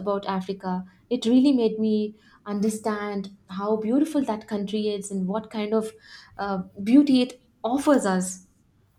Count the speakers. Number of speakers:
1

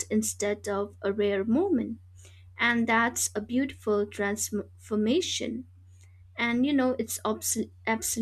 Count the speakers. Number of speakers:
1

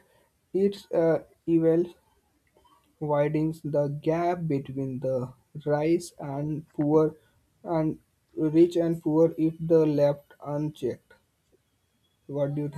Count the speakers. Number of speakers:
1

